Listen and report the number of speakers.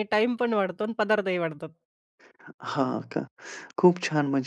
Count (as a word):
two